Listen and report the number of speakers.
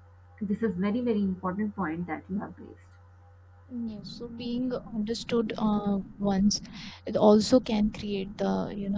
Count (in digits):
2